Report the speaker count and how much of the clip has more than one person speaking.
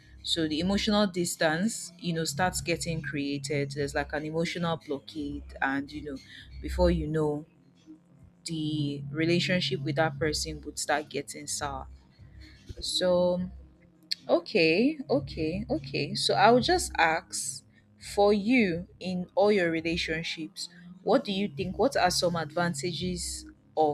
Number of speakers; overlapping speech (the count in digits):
1, no overlap